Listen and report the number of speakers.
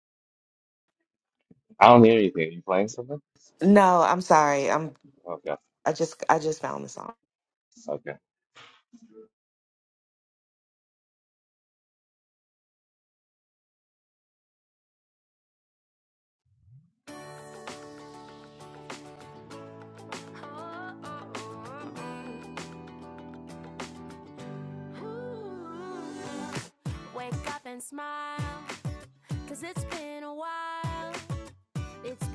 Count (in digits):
3